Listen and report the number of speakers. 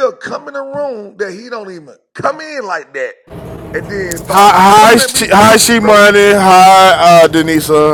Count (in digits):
2